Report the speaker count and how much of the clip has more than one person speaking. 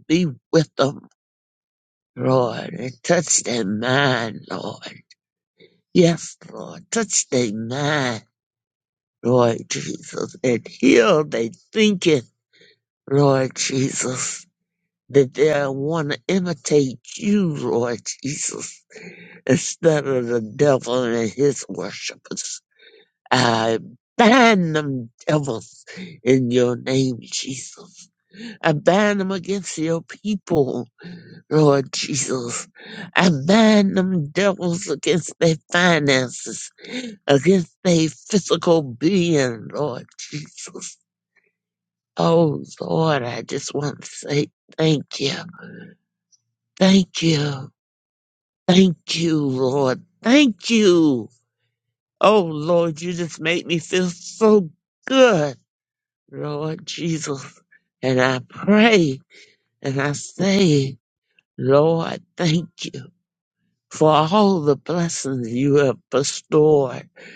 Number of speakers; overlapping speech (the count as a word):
one, no overlap